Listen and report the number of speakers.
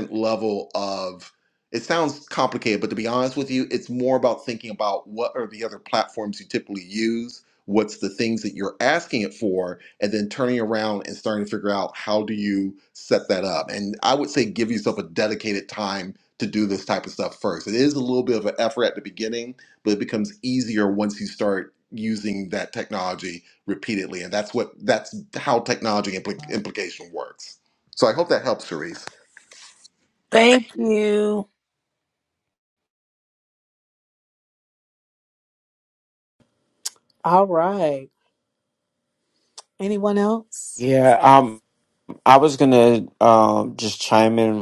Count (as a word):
four